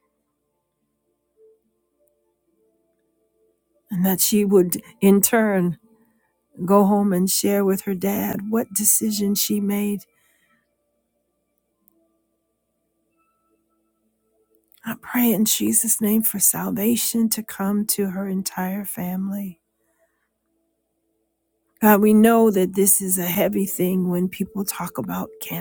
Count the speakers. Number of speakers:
one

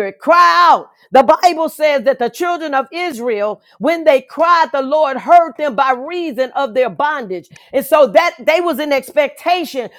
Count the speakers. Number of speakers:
one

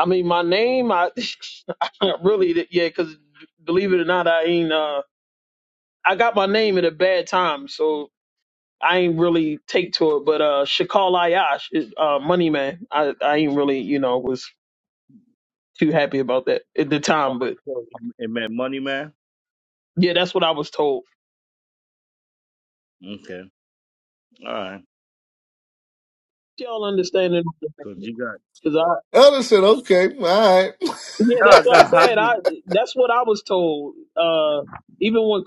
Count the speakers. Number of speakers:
three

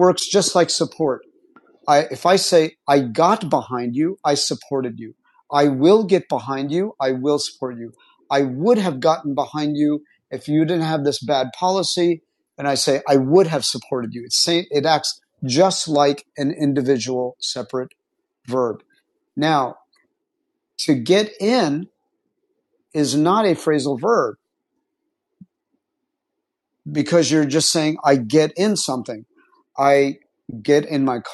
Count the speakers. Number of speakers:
one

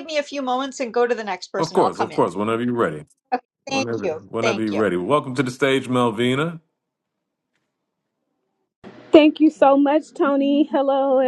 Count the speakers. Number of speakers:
three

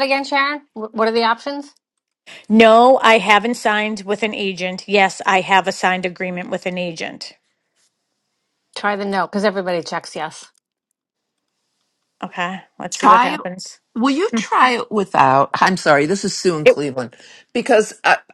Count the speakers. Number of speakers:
three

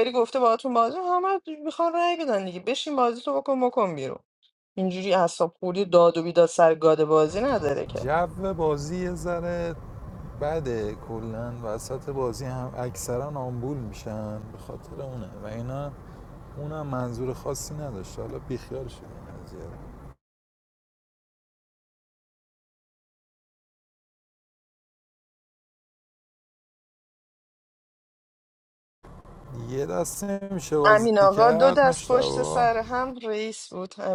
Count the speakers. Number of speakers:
two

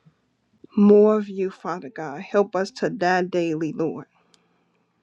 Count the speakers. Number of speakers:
one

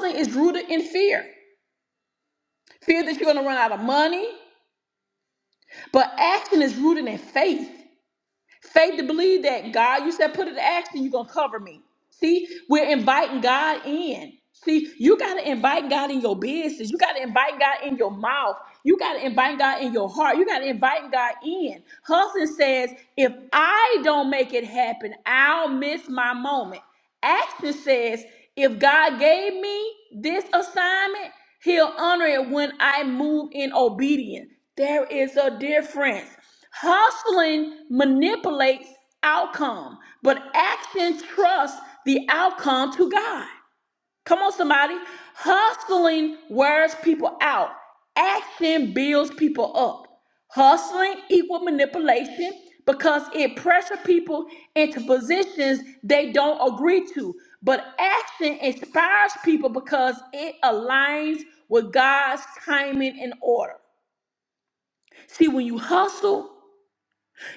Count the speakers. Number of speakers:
one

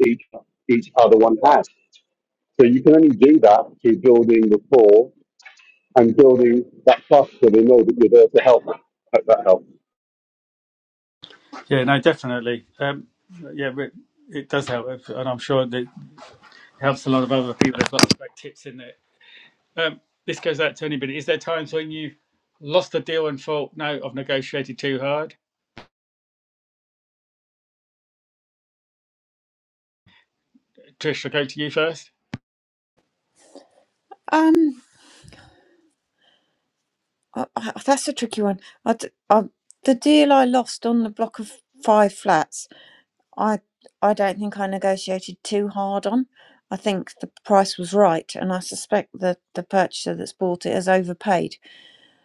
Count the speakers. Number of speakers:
three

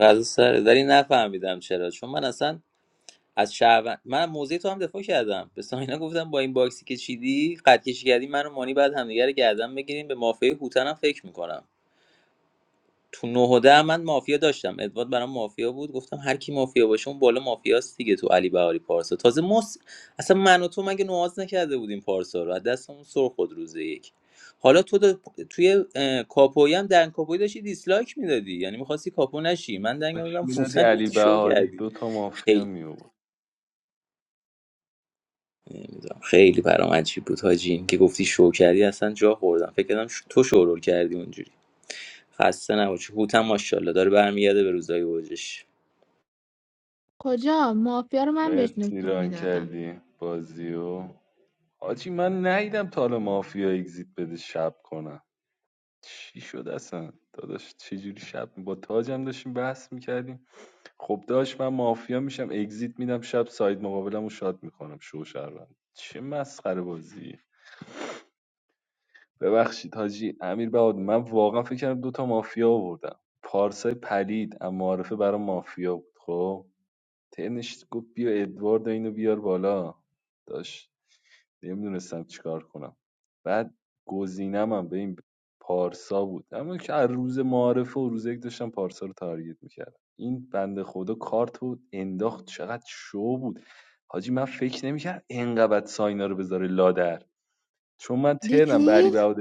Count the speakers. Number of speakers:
three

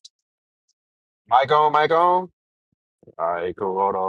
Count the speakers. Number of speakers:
one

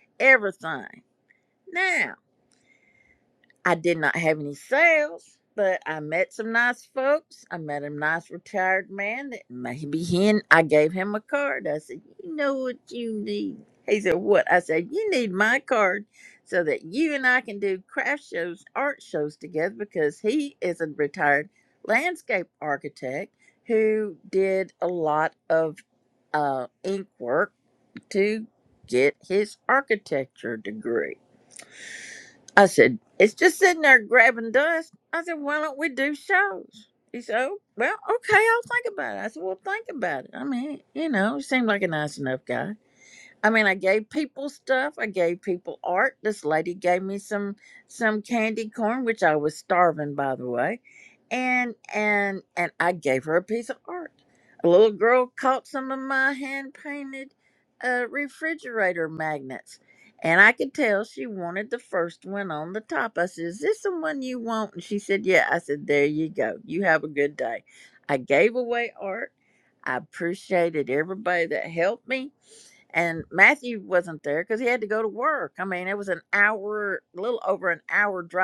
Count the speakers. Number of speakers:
one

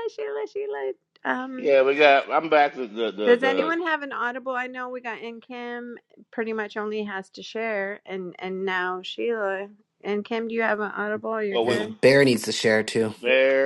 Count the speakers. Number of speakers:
three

